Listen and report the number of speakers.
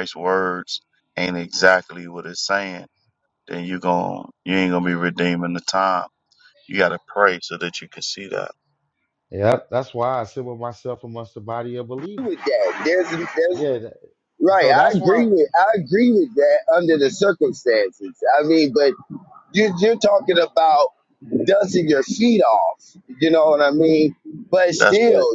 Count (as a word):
three